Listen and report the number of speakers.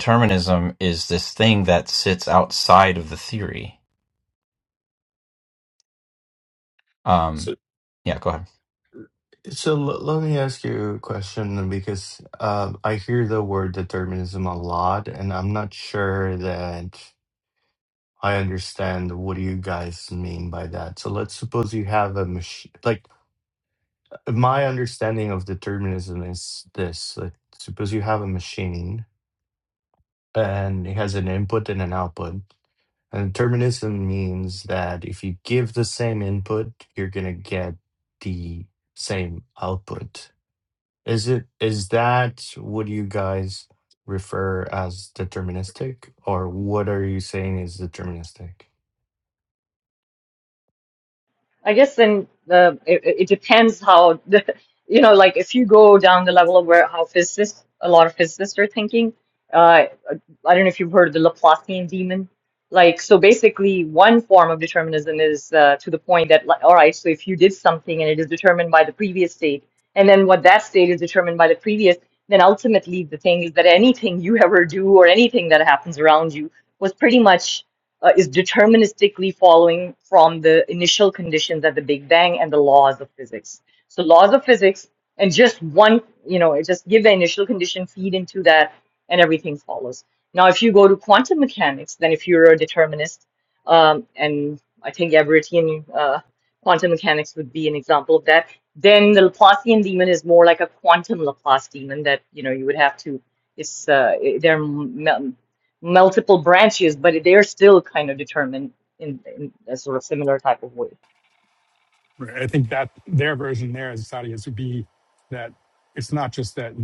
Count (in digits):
4